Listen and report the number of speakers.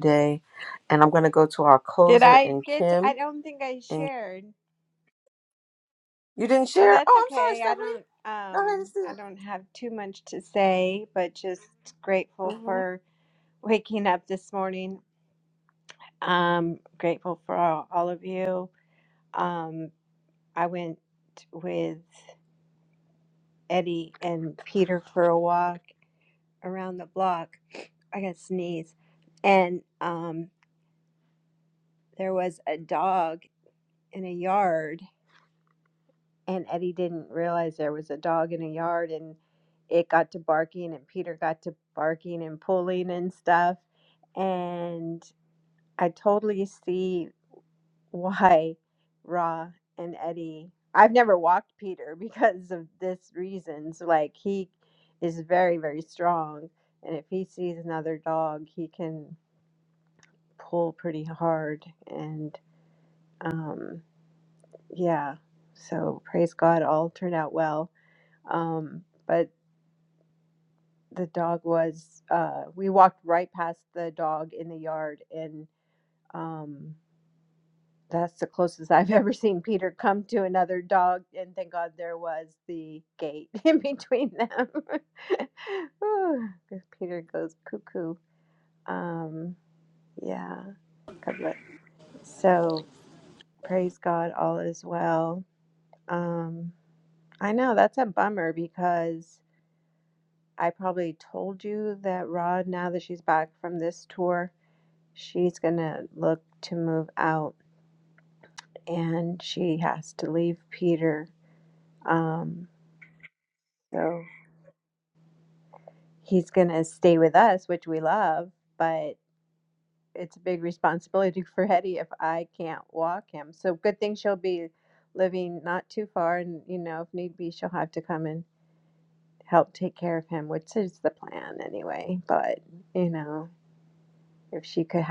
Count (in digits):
2